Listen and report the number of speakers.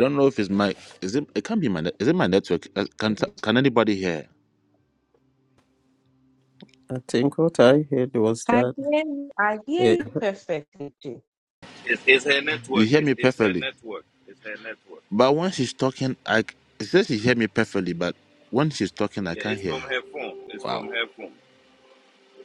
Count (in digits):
4